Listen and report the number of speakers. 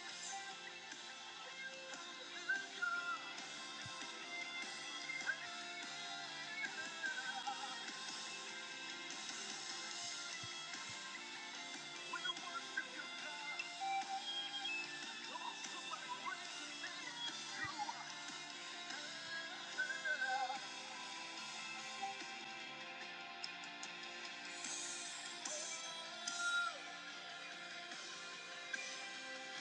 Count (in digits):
0